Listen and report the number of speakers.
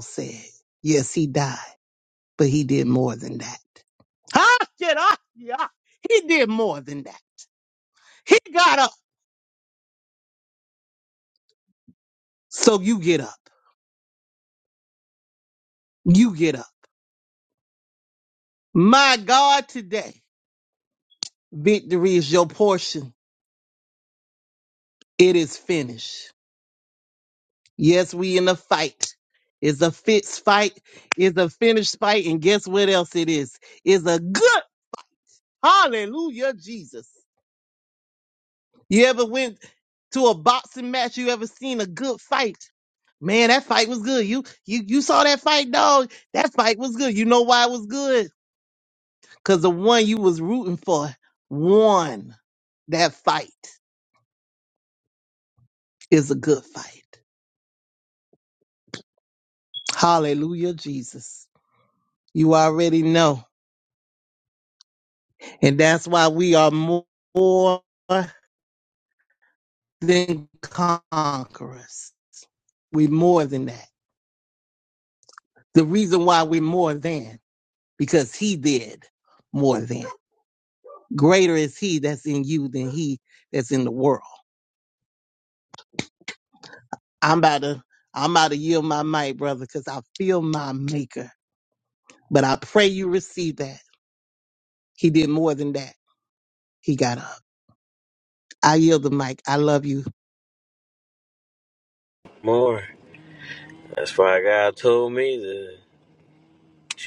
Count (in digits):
2